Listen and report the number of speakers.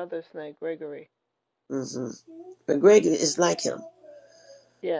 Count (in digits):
2